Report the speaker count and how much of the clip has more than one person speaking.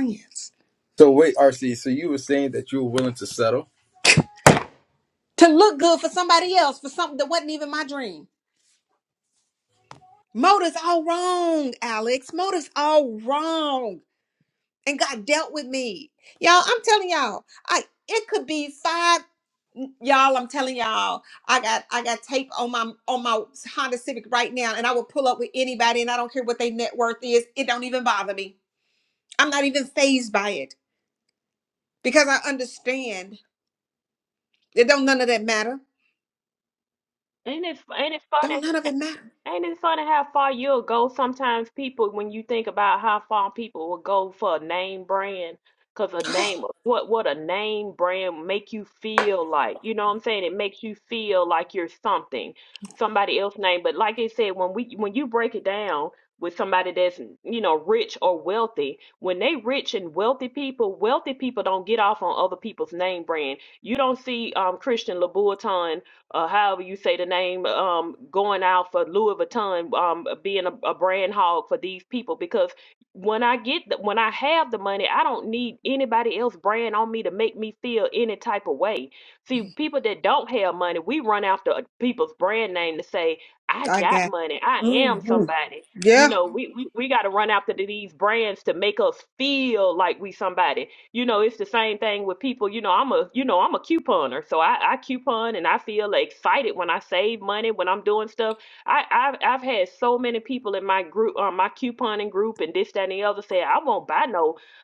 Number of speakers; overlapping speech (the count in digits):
3, about 2%